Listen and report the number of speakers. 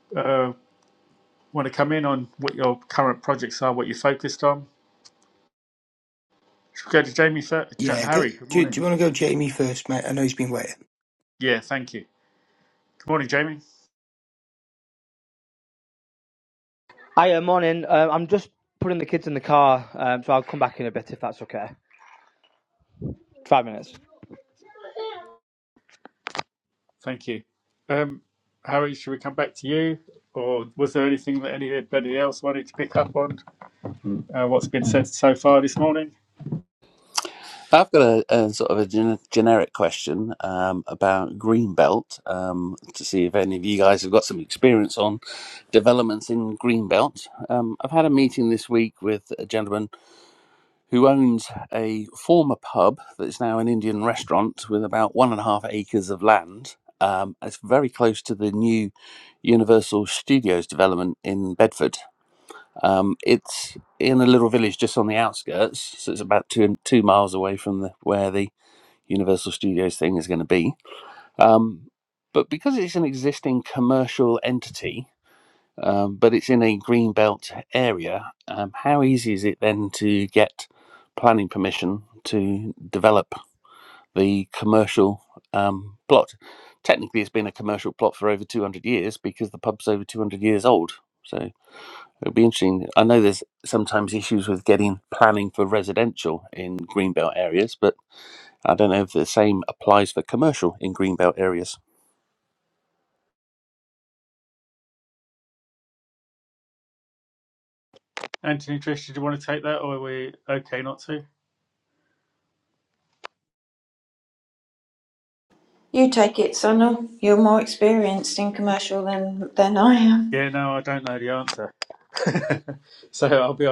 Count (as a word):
five